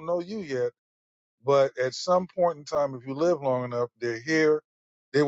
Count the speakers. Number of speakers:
one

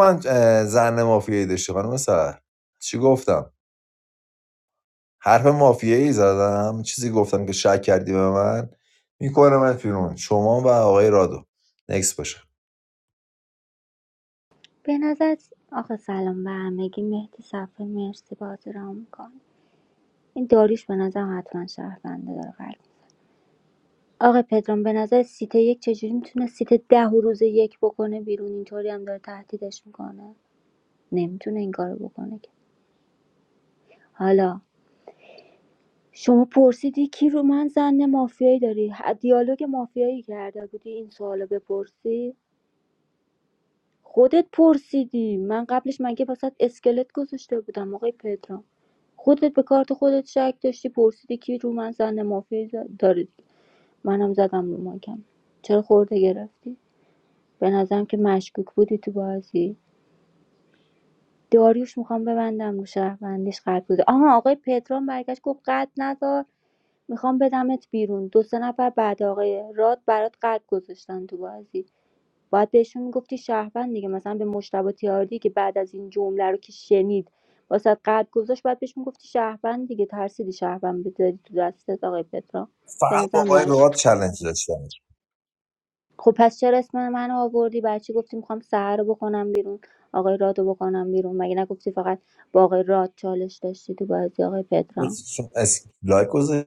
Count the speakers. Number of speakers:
two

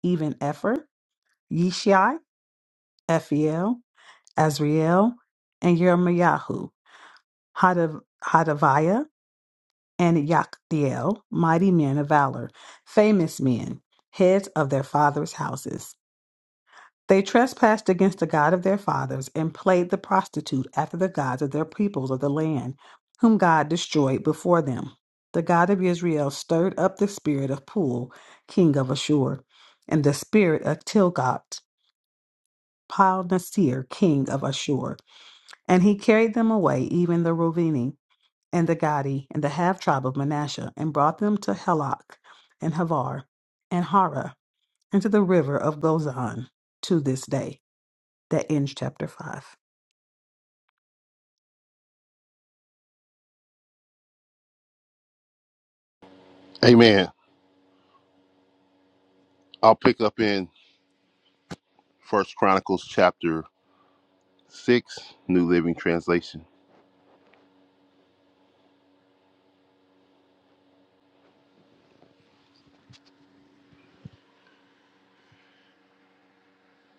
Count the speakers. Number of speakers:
two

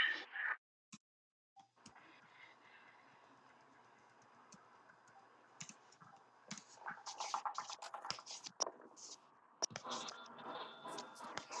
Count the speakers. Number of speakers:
zero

